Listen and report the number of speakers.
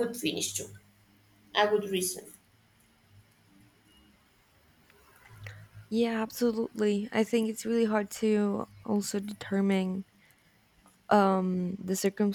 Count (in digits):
2